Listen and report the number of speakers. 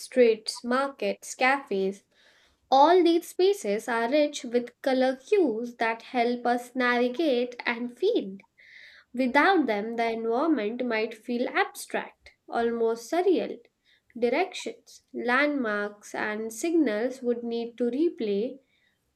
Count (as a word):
one